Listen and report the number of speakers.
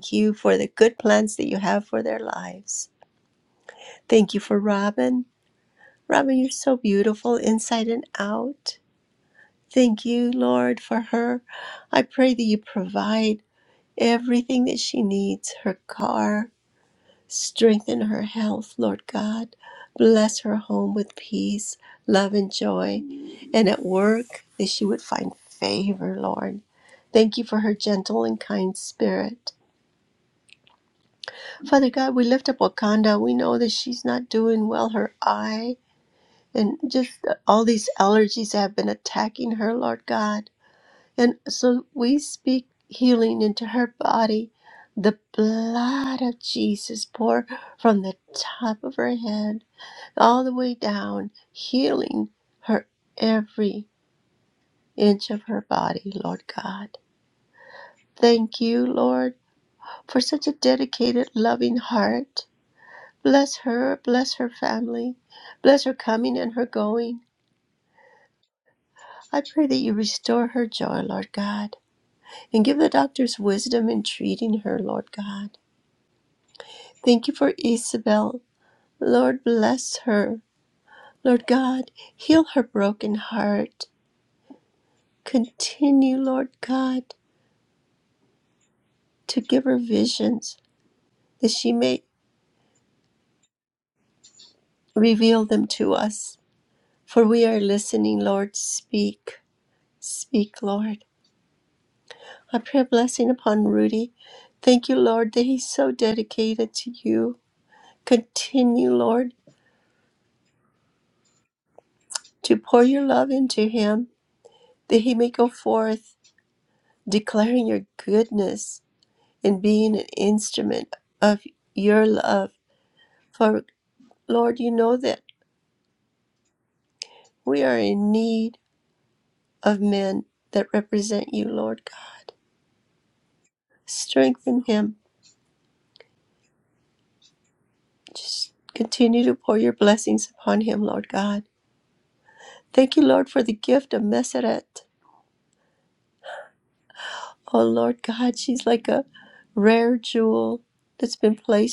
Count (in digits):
1